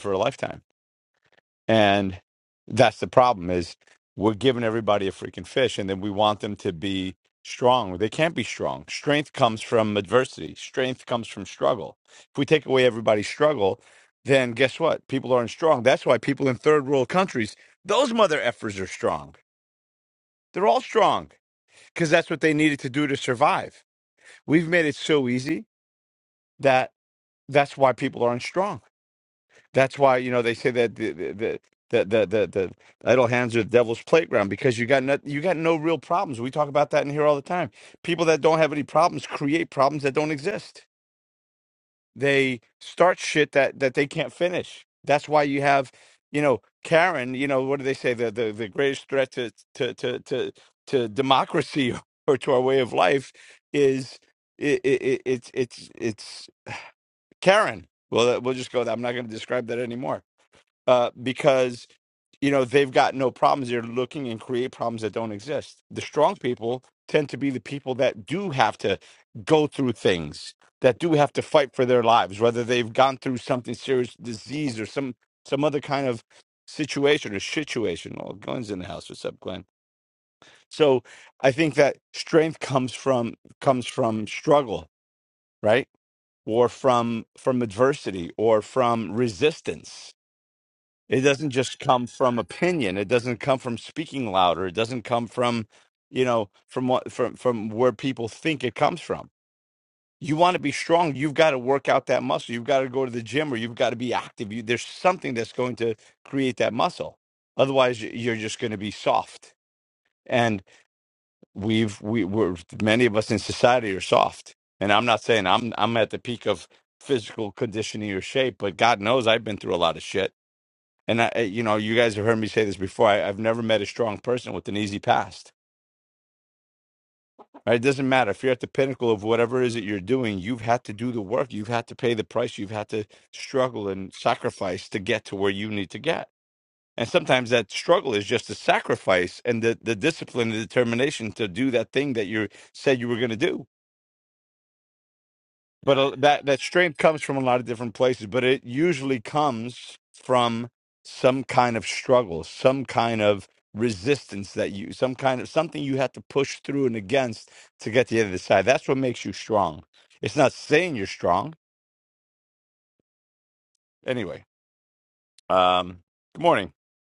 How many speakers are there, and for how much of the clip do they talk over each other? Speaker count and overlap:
1, no overlap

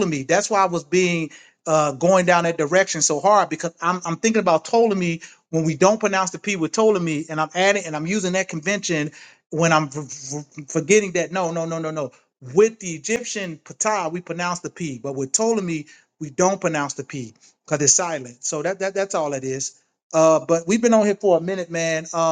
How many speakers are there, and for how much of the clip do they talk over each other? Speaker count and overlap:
1, no overlap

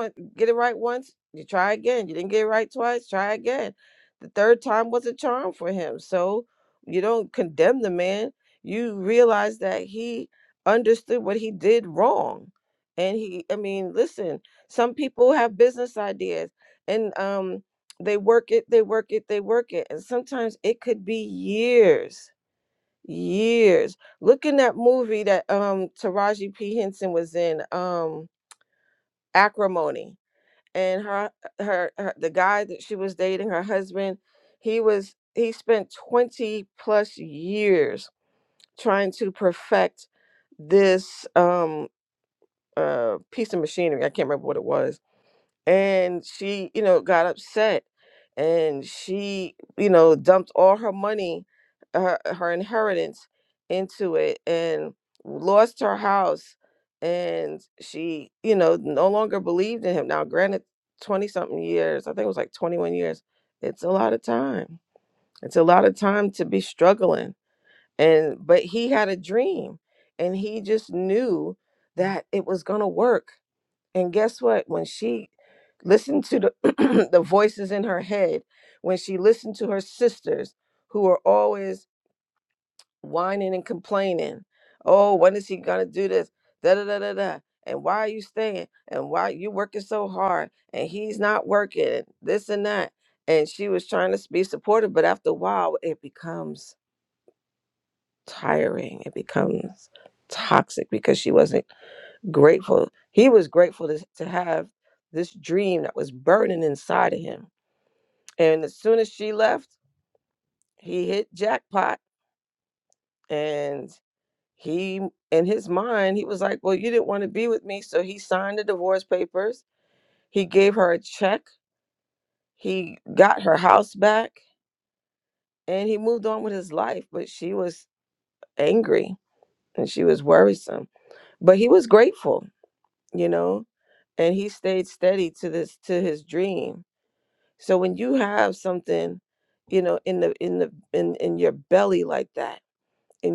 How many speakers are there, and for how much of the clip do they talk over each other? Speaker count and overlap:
1, no overlap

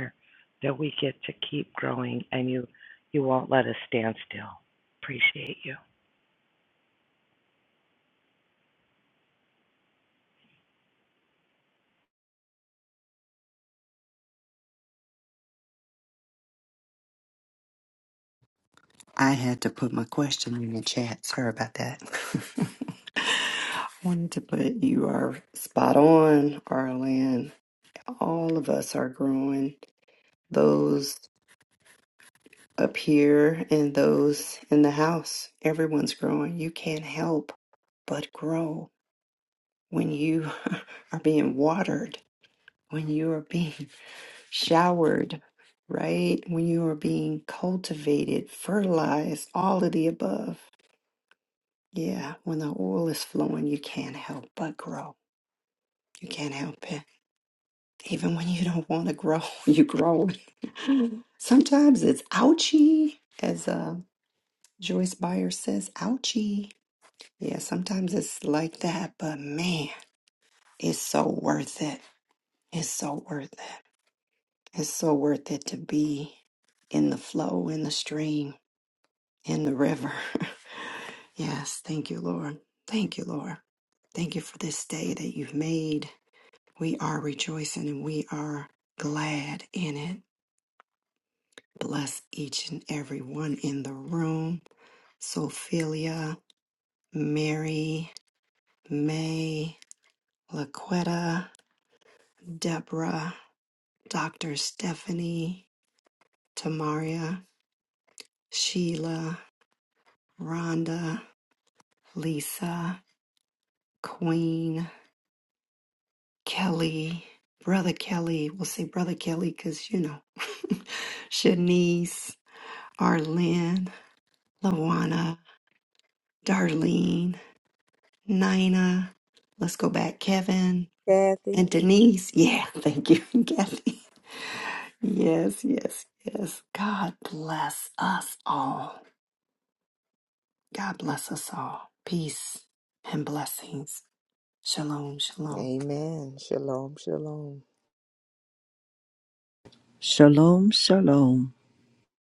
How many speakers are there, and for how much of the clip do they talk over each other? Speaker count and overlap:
4, under 1%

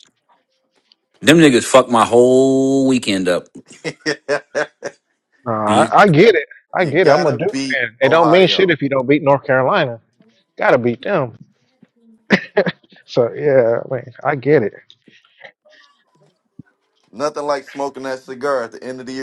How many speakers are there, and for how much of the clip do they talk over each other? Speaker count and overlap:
3, about 10%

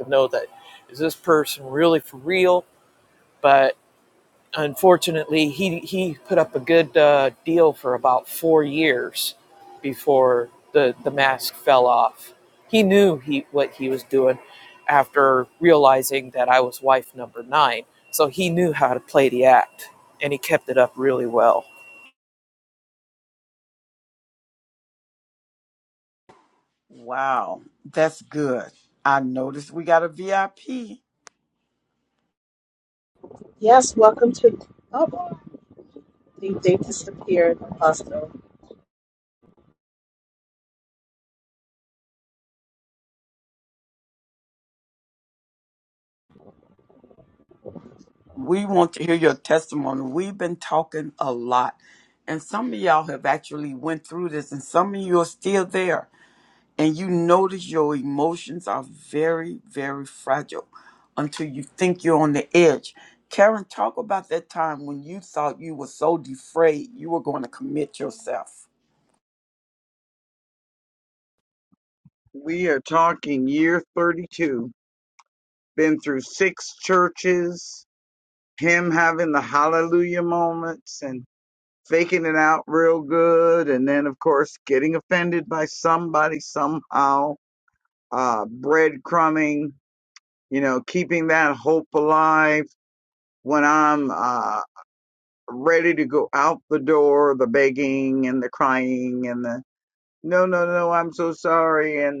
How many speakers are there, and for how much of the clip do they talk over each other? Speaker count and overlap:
4, no overlap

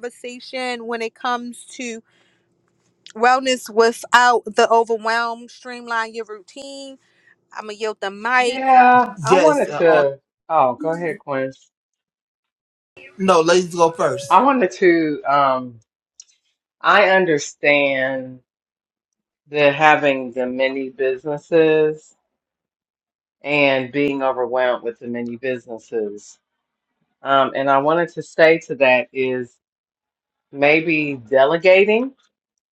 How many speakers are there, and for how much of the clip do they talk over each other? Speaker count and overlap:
3, about 3%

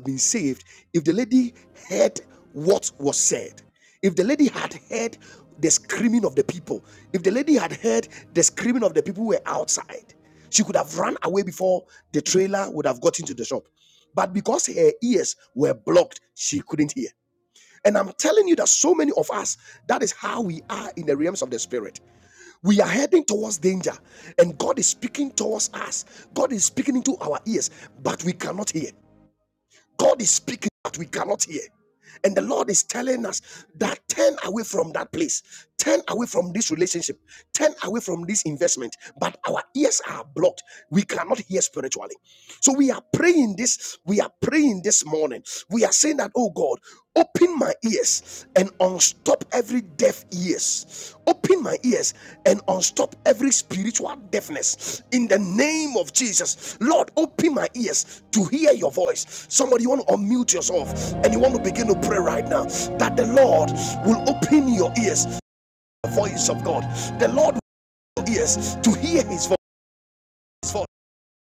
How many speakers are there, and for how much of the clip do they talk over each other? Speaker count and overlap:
1, no overlap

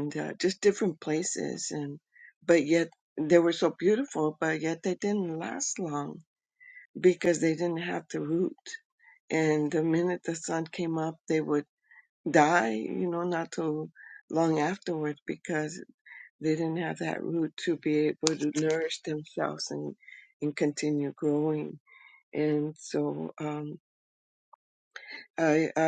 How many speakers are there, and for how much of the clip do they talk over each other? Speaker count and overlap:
1, no overlap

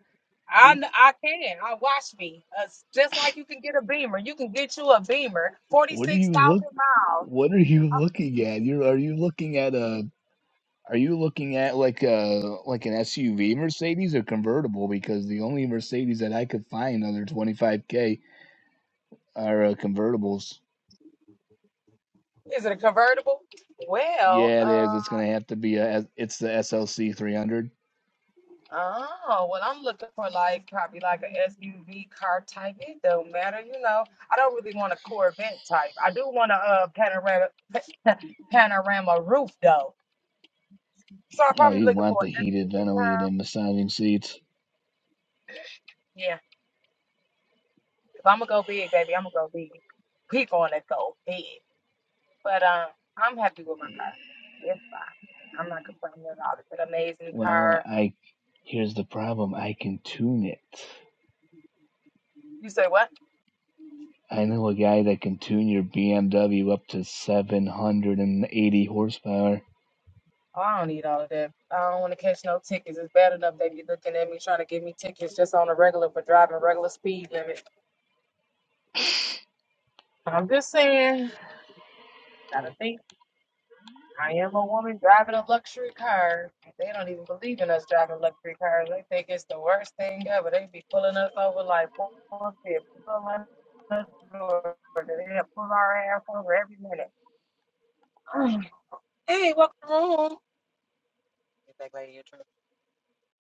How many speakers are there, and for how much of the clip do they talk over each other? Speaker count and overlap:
2, about 3%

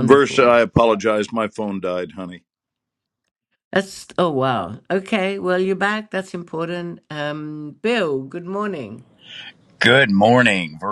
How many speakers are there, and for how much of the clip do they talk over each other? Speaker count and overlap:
3, about 5%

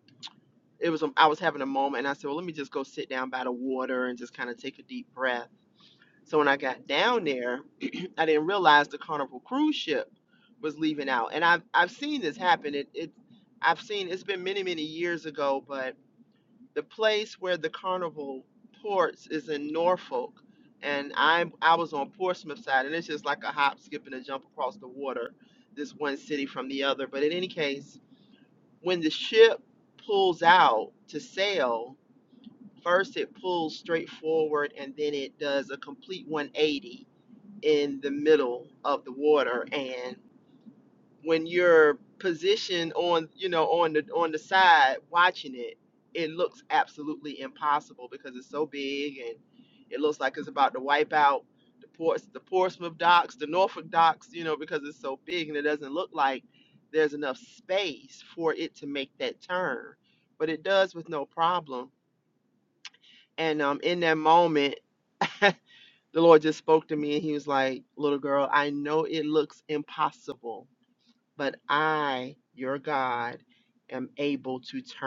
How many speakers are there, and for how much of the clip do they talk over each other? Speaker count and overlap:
1, no overlap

